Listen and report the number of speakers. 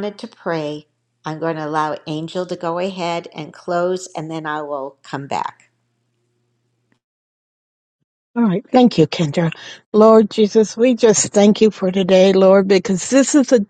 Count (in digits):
2